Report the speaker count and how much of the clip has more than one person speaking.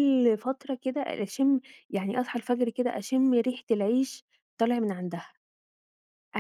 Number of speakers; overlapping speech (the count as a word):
one, no overlap